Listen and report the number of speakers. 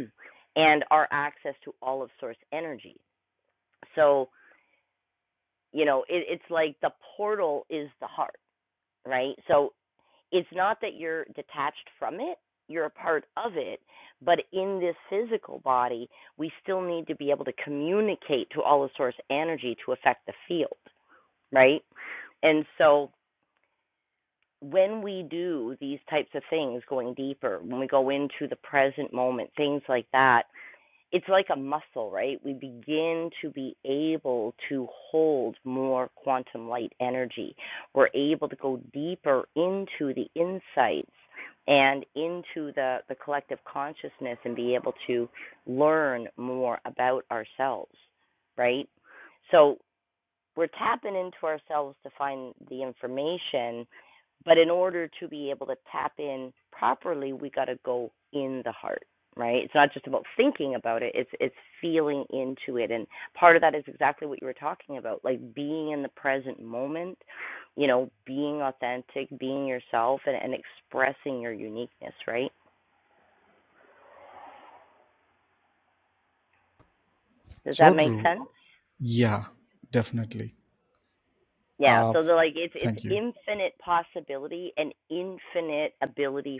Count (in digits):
2